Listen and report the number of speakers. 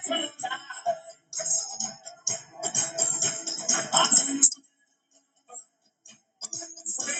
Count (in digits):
0